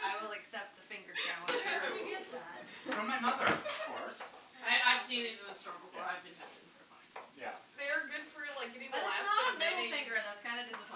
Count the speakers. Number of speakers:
4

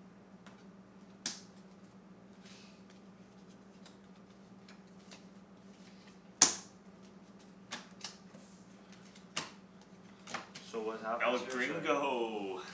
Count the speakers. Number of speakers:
2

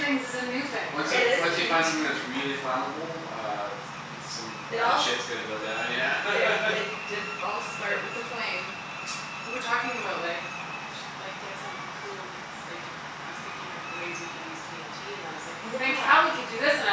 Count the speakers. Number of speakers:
3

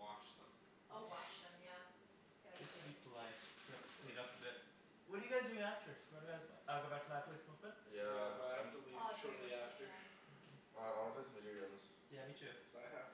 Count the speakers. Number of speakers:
4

